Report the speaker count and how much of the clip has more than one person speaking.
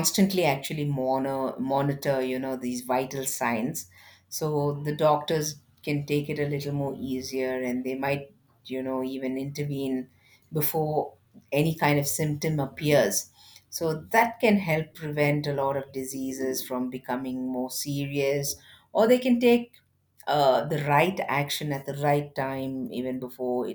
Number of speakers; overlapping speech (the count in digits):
1, no overlap